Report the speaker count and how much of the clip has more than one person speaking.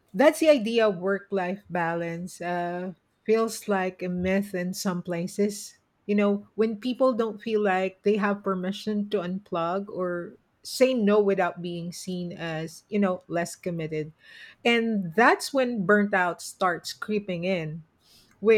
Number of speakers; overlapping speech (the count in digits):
1, no overlap